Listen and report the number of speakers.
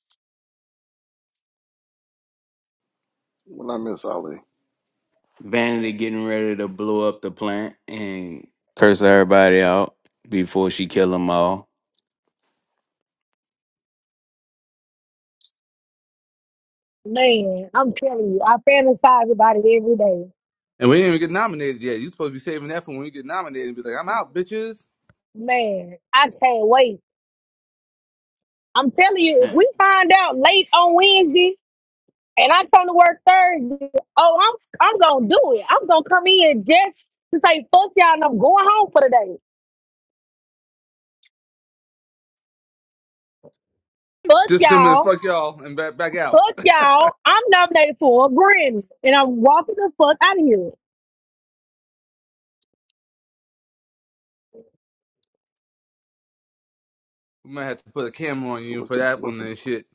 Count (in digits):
4